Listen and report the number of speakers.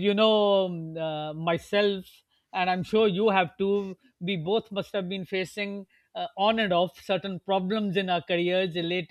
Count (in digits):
1